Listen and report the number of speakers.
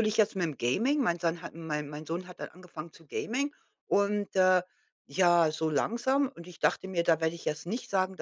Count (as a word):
one